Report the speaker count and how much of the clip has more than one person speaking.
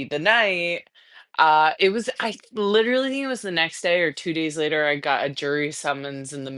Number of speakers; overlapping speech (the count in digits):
1, no overlap